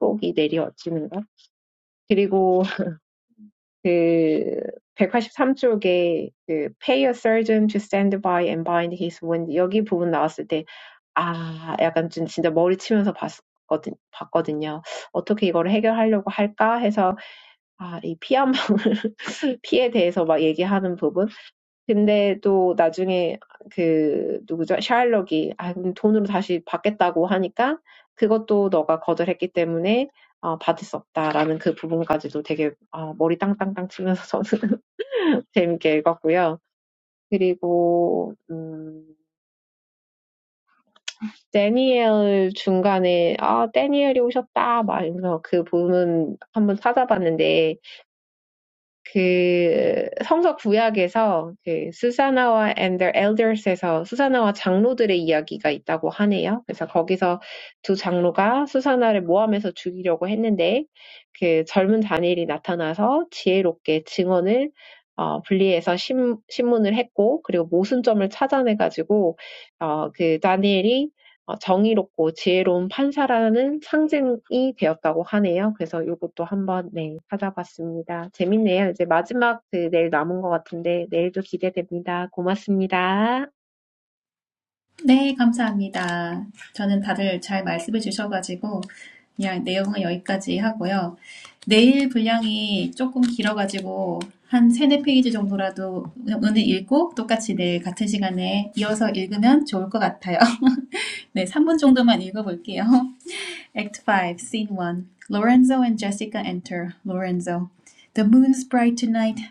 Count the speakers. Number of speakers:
two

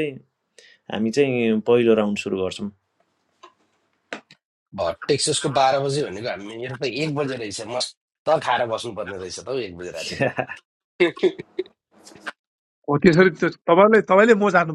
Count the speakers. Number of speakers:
three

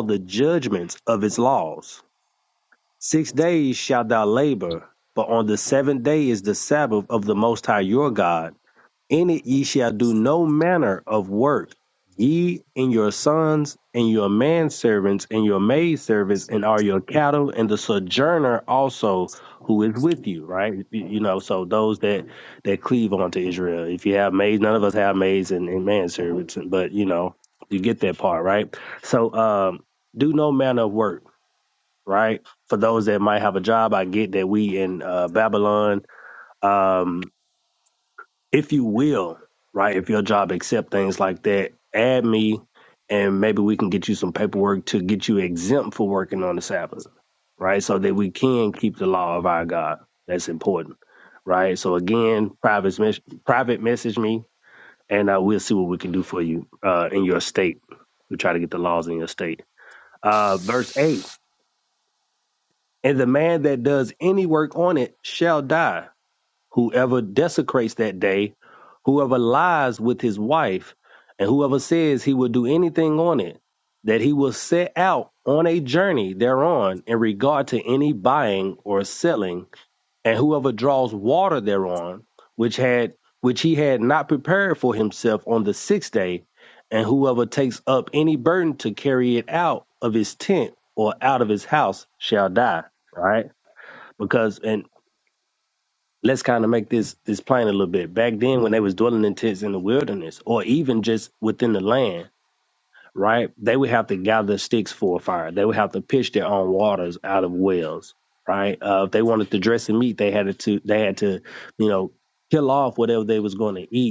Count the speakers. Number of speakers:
one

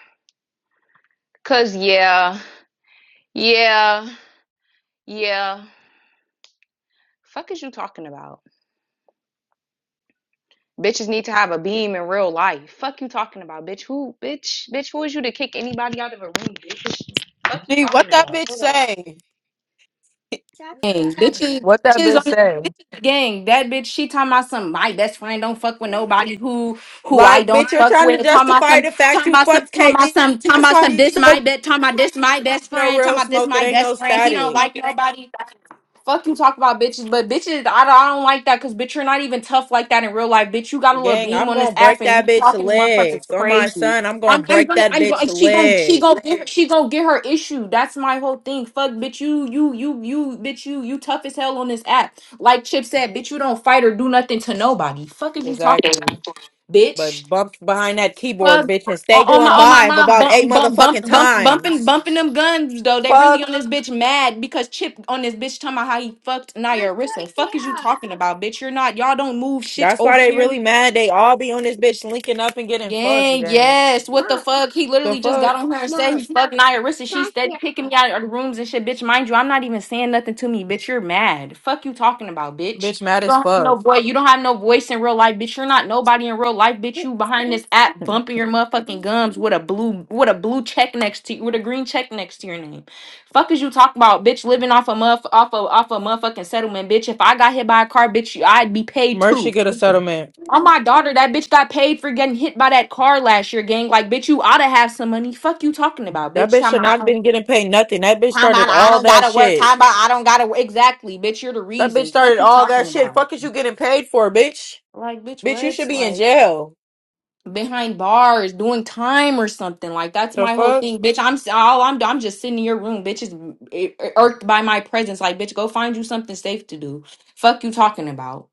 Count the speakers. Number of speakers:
two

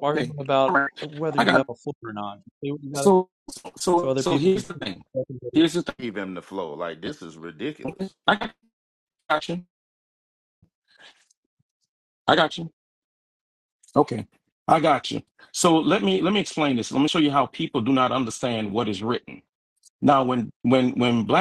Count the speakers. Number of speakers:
three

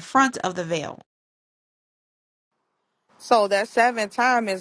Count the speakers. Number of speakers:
two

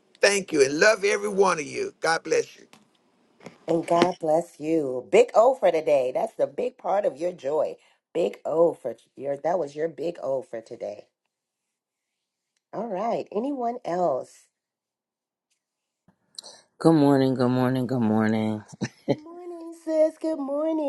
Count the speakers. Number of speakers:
three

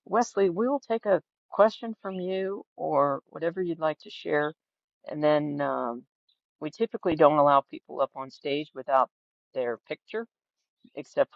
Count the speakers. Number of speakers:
one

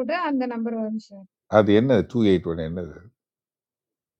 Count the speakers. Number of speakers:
two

